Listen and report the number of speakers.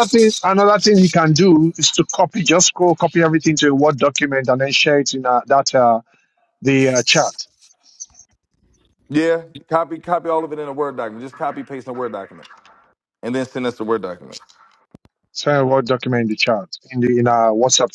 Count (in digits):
2